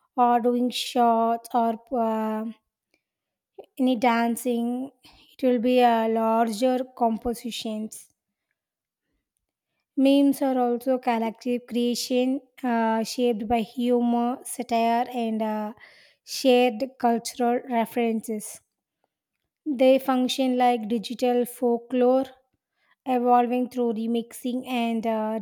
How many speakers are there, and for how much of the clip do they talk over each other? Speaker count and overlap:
one, no overlap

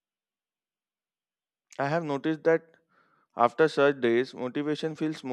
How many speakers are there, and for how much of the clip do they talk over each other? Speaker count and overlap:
one, no overlap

